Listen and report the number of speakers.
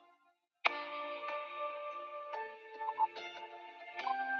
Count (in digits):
0